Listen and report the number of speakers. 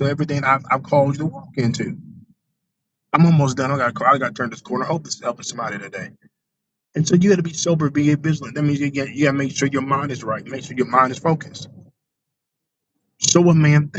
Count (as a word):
one